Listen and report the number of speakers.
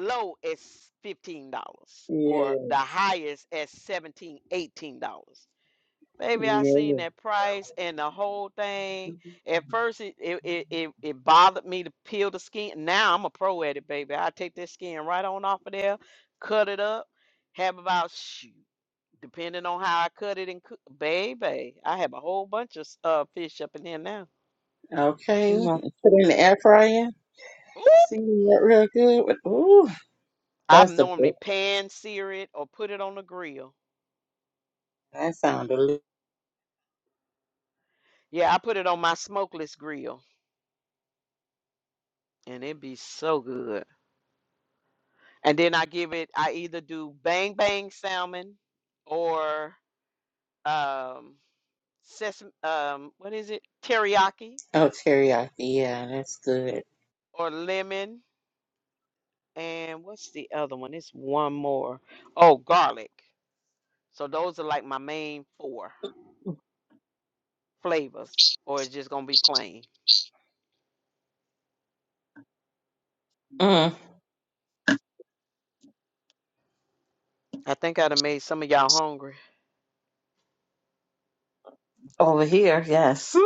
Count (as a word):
three